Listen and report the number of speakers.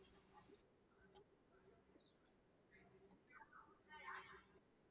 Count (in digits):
0